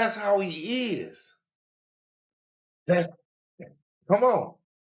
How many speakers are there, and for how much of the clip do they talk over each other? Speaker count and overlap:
1, no overlap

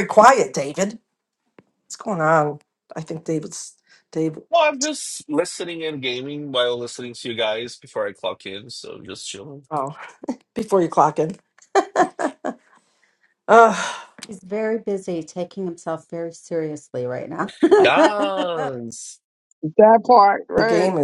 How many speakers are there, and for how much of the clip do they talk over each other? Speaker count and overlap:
4, about 2%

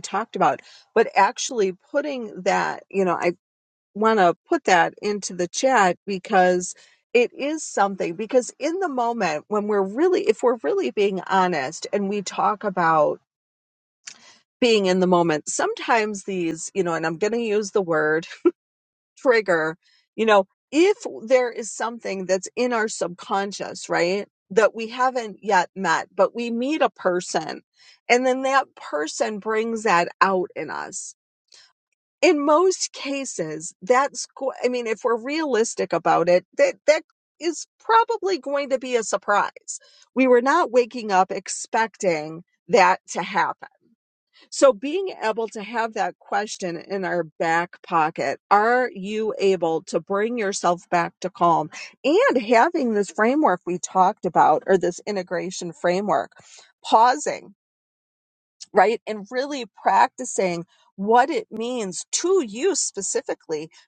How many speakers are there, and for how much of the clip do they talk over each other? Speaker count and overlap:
1, no overlap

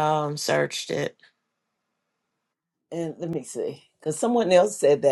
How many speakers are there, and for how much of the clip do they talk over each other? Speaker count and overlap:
2, no overlap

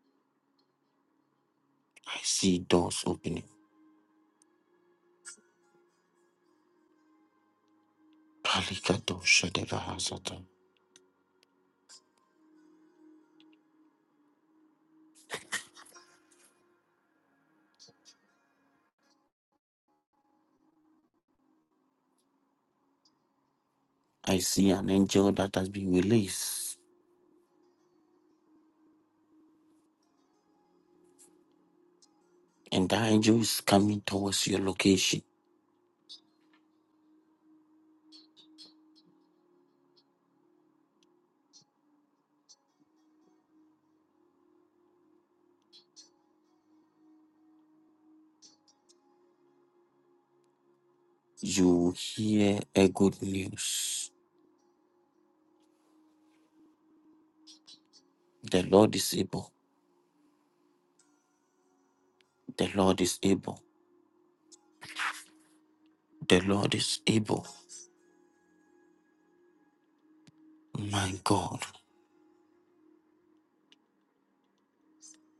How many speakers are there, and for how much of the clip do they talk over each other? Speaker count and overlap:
1, no overlap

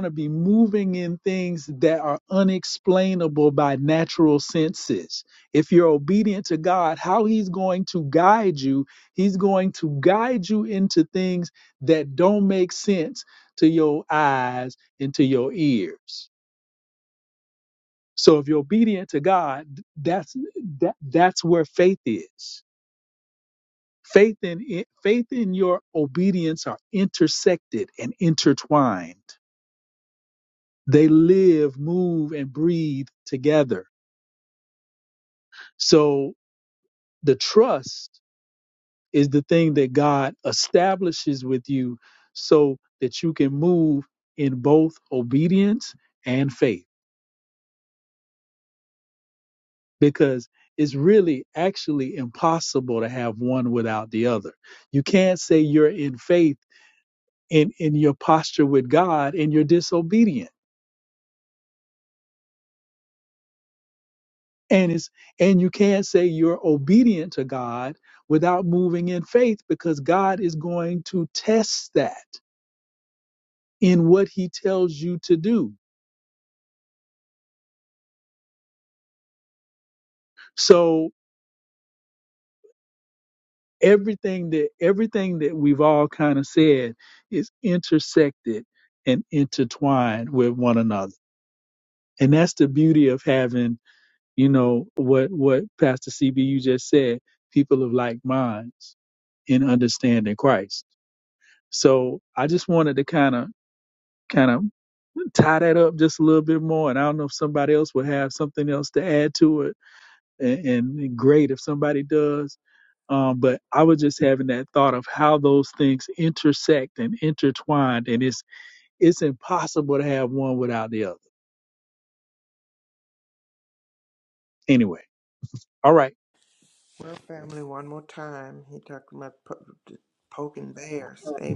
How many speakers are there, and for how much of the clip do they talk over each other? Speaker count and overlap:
2, no overlap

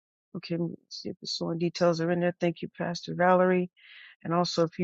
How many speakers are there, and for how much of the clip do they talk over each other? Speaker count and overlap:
1, no overlap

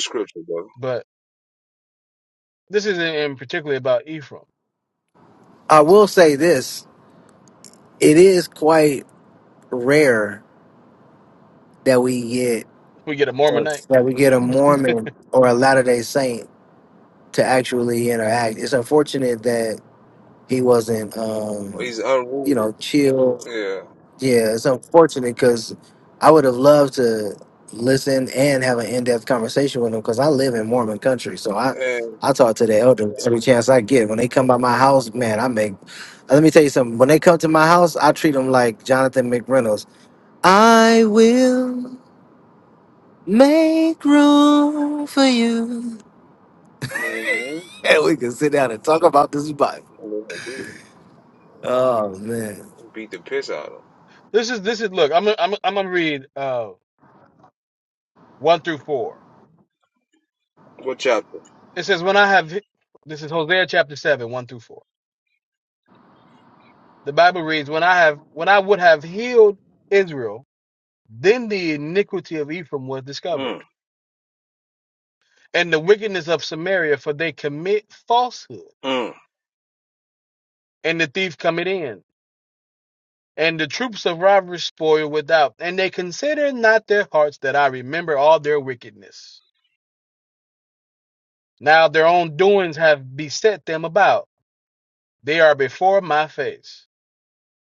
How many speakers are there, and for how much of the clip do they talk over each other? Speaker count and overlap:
3, about 1%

